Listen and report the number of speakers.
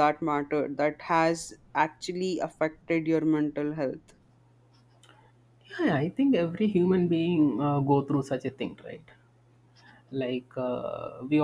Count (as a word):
two